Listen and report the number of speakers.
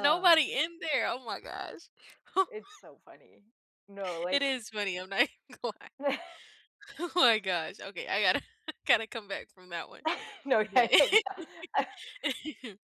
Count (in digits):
2